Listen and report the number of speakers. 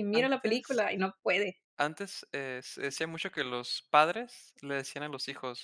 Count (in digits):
2